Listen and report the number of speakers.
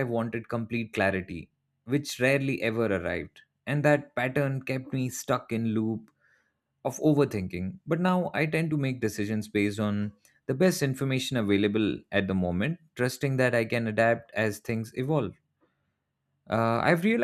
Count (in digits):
1